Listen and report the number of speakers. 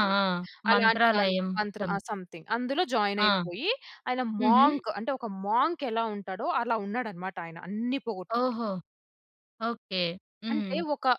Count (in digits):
2